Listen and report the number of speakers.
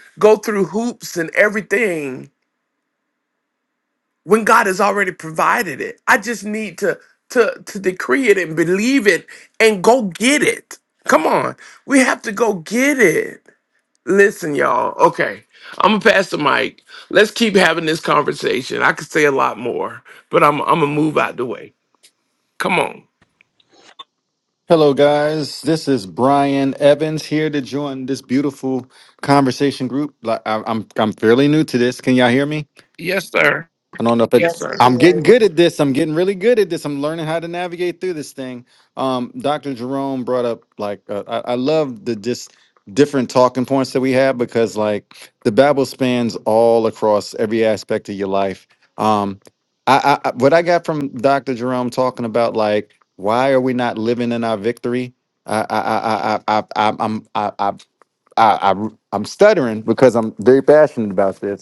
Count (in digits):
2